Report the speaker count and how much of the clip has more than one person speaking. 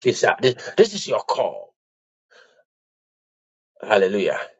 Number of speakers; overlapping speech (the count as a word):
one, no overlap